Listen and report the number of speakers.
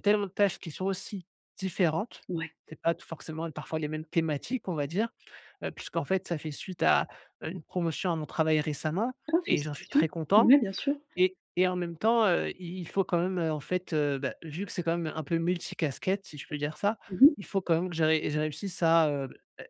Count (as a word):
two